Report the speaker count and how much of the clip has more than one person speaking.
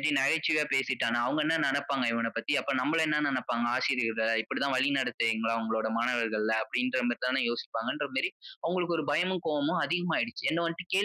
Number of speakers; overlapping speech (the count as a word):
one, no overlap